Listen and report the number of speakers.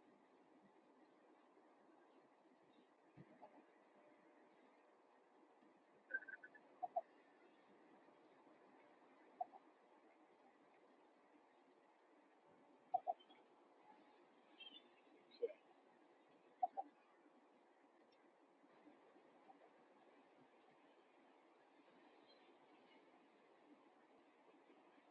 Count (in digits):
0